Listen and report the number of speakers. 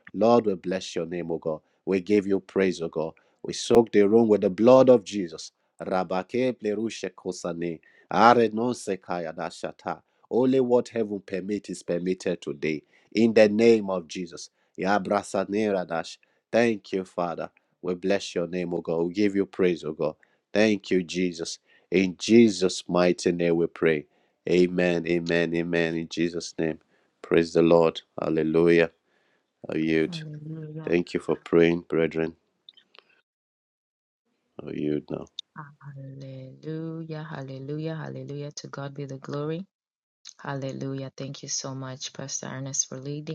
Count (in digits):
2